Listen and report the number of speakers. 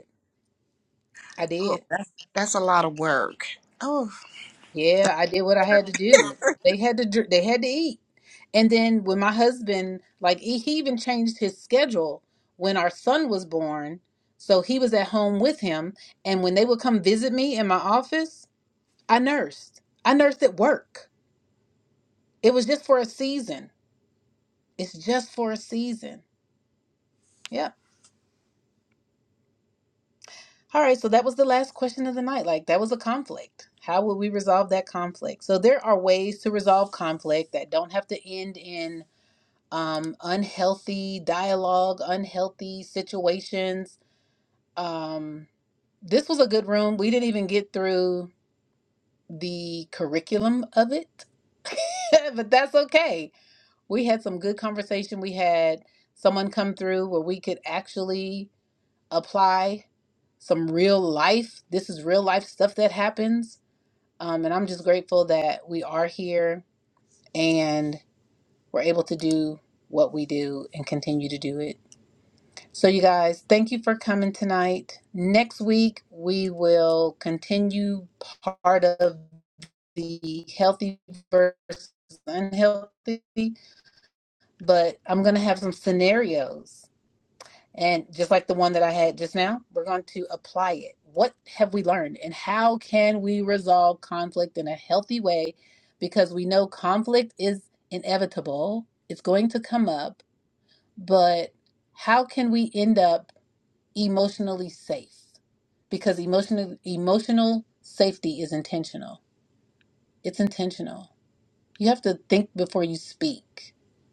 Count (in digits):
2